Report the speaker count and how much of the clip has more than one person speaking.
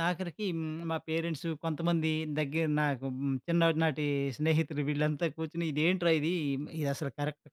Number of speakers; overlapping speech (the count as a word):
one, no overlap